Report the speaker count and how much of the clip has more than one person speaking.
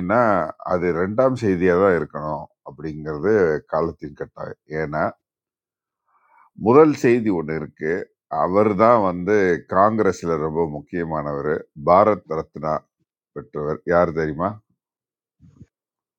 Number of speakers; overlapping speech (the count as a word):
one, no overlap